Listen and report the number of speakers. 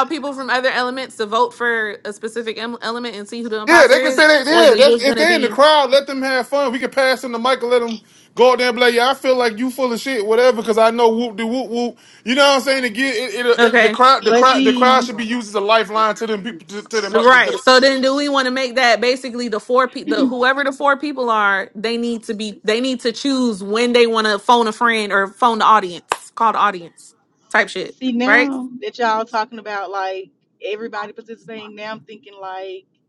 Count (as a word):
three